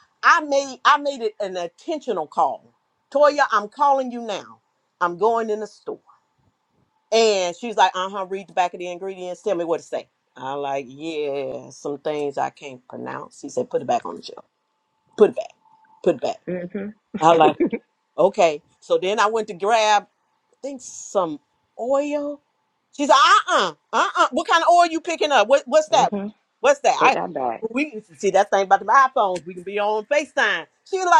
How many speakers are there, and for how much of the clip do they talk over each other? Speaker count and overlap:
two, about 1%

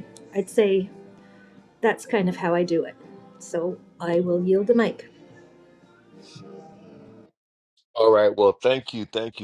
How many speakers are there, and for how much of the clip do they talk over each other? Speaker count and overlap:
two, no overlap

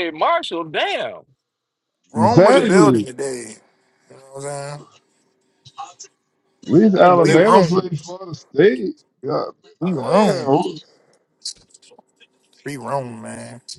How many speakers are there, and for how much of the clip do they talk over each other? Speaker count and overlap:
three, about 16%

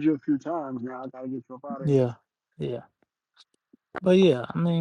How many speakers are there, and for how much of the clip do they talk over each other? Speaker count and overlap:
two, about 1%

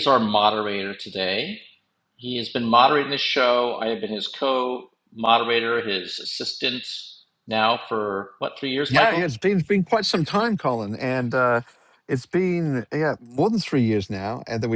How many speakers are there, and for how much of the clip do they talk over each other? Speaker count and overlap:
two, about 3%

